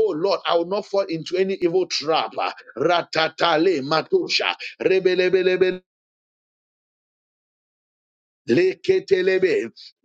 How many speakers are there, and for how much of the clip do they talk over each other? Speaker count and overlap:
1, no overlap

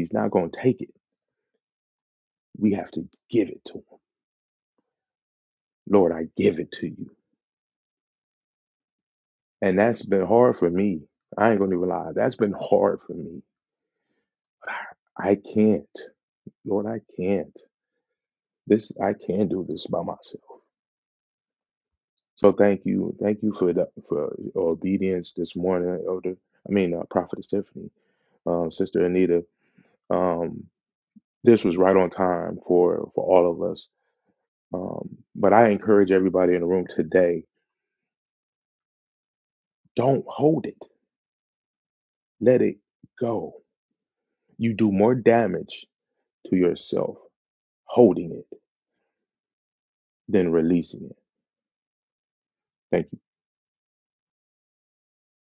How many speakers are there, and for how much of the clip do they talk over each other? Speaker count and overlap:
1, no overlap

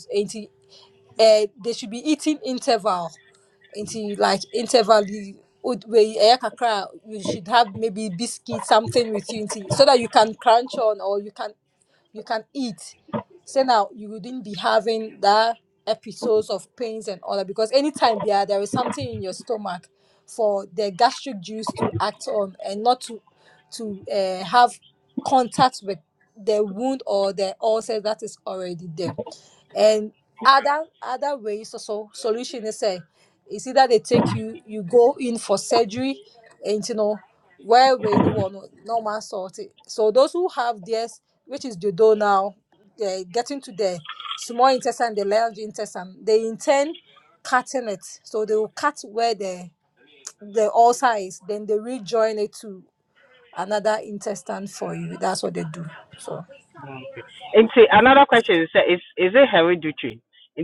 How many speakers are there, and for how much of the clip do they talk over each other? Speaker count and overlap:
2, no overlap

